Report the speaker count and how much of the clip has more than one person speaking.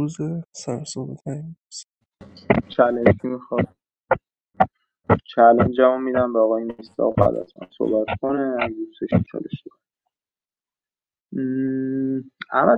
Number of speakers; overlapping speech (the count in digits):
2, no overlap